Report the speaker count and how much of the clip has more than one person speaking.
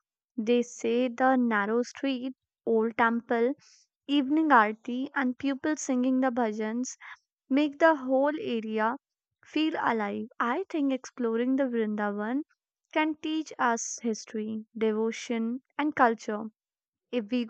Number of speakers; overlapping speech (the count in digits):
1, no overlap